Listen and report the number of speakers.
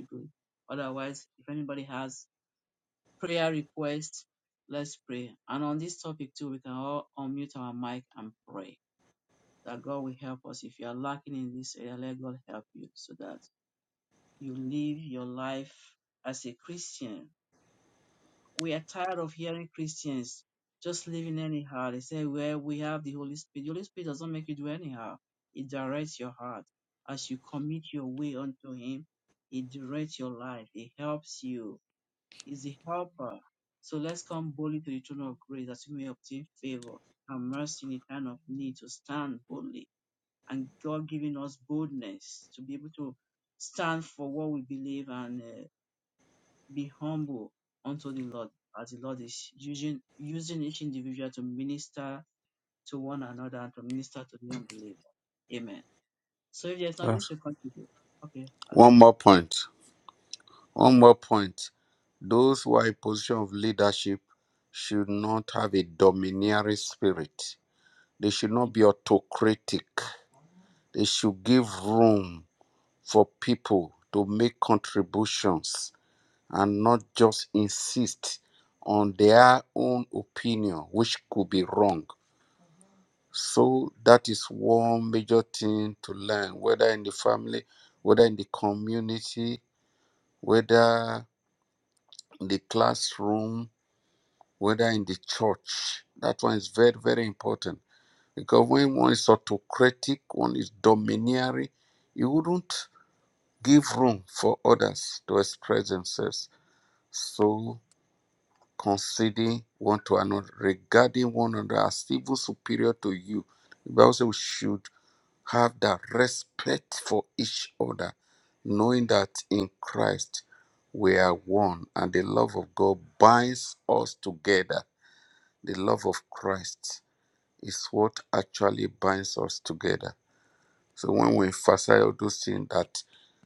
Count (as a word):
two